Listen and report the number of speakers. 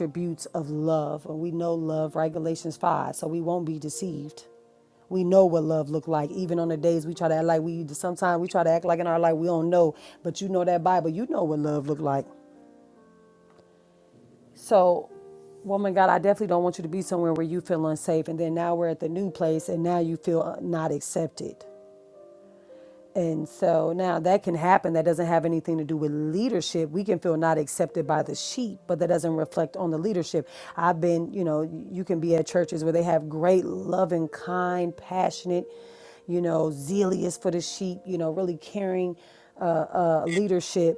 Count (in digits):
1